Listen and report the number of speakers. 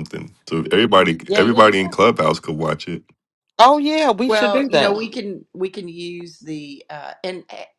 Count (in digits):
3